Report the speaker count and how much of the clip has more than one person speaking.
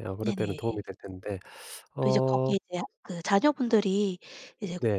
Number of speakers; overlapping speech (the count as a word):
two, about 18%